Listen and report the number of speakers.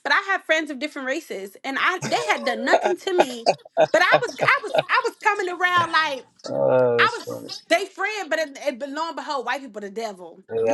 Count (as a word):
two